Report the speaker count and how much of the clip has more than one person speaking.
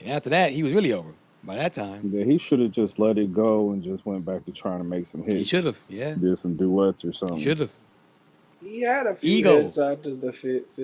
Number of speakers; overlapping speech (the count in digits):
3, about 8%